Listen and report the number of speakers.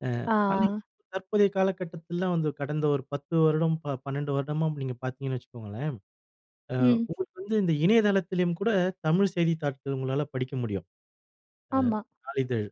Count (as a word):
two